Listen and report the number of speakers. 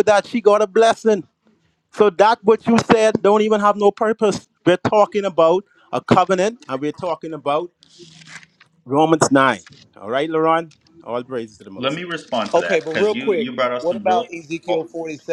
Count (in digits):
3